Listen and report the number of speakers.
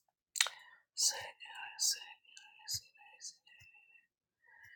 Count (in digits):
0